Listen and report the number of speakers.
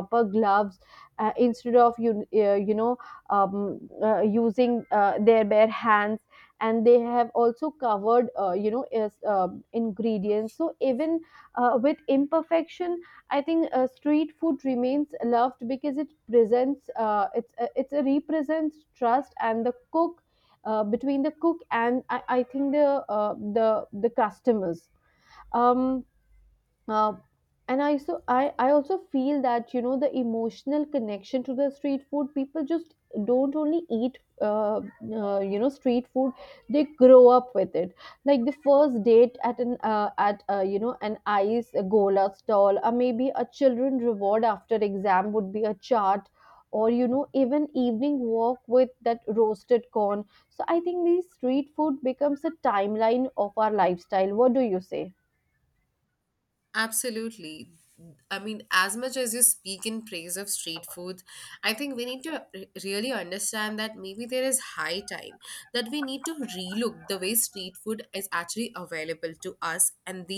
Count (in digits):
2